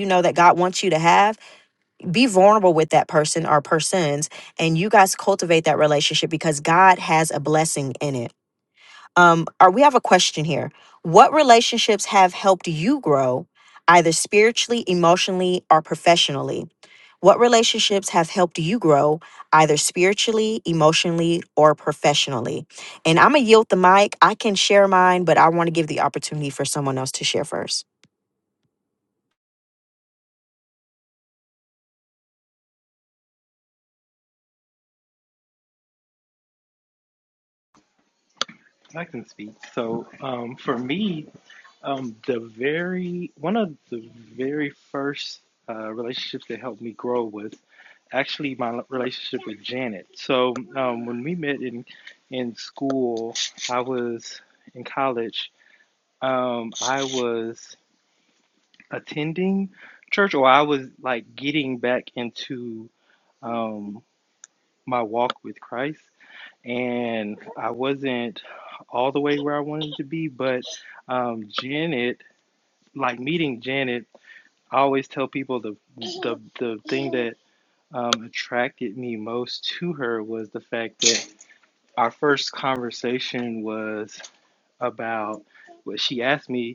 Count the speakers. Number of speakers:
two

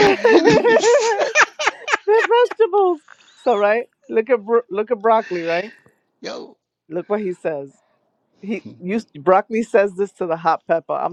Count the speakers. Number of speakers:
two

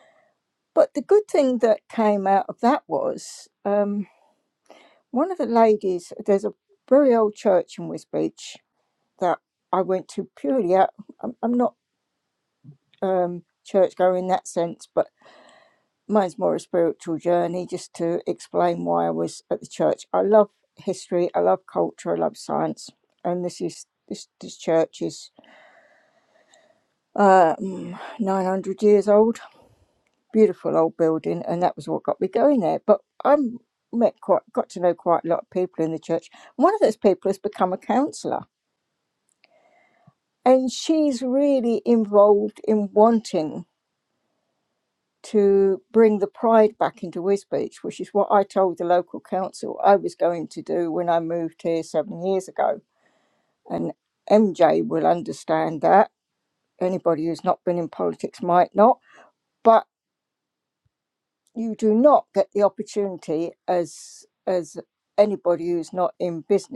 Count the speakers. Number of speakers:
one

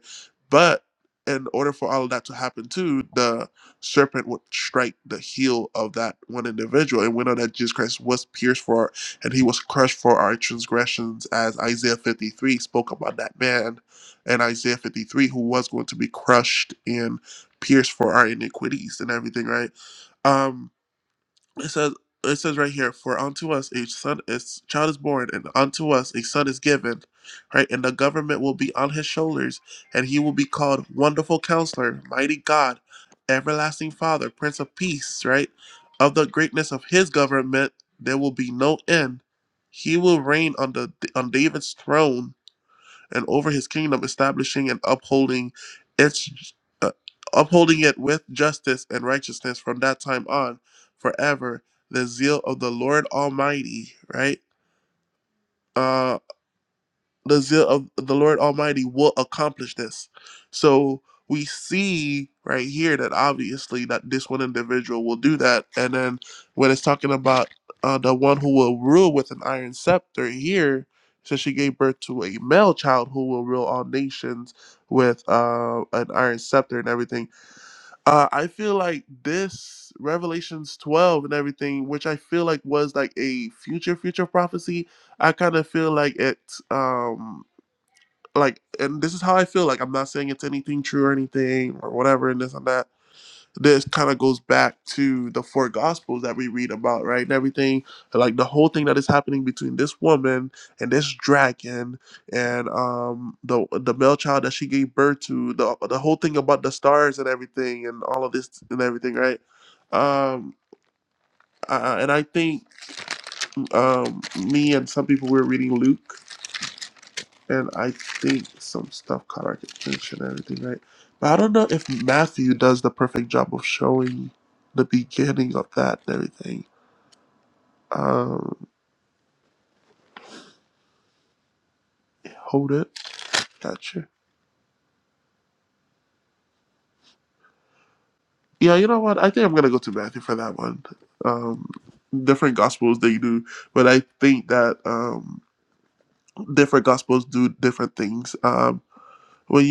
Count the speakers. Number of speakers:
one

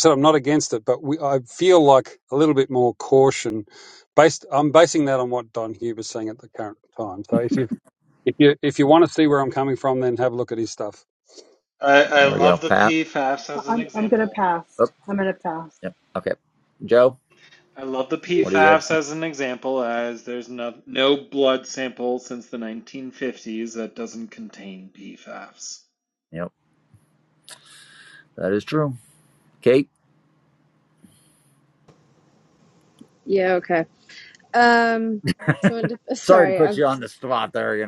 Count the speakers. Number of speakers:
five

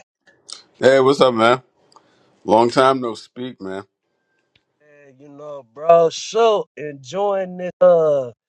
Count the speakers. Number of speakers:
two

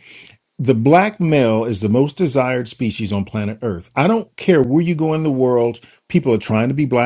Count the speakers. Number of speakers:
one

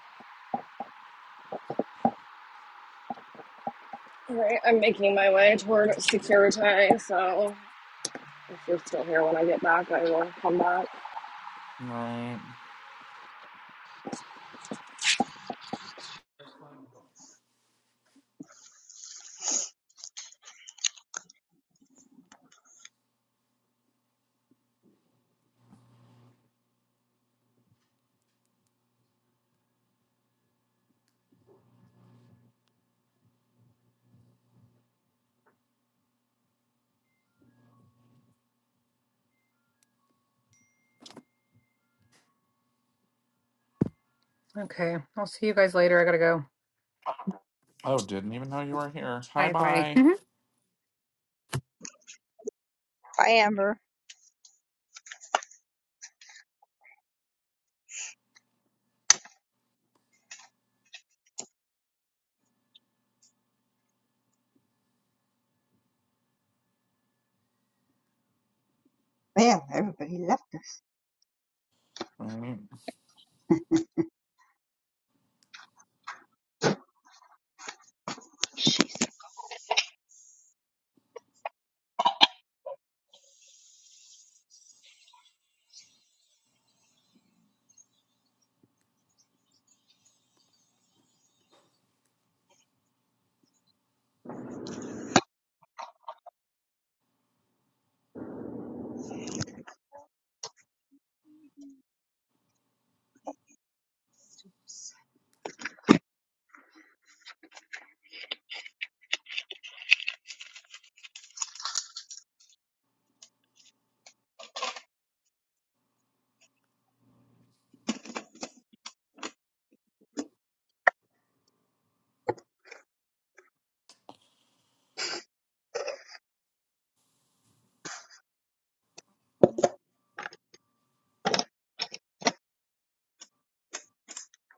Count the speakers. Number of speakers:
four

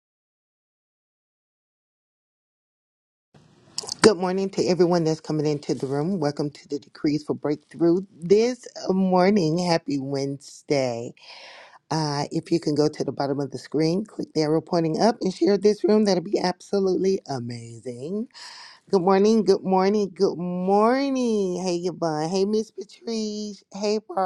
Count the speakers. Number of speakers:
one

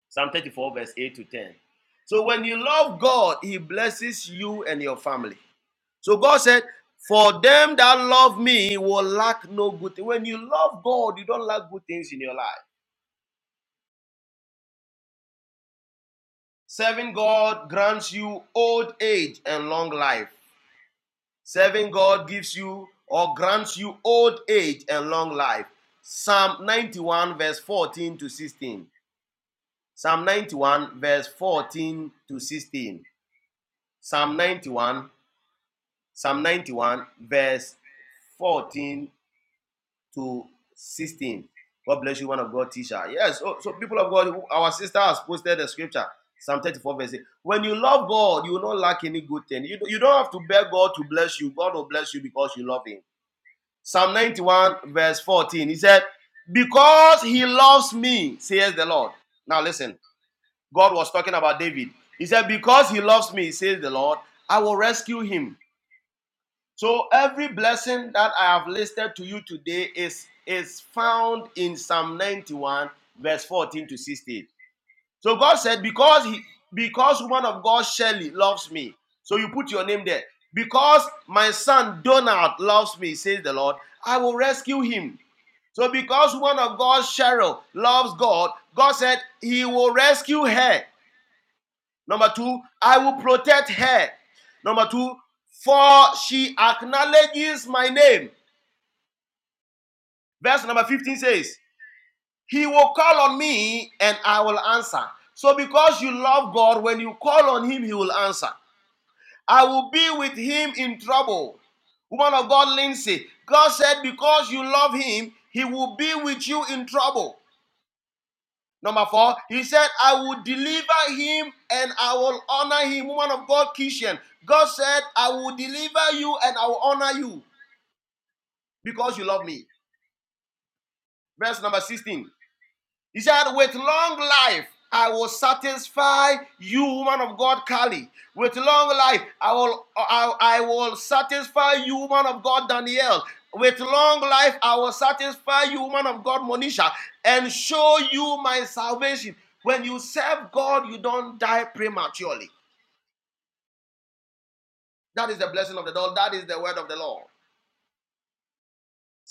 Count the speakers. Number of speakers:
one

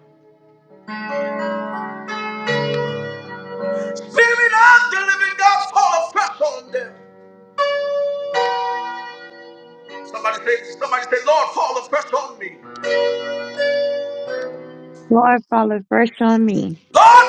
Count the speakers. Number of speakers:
two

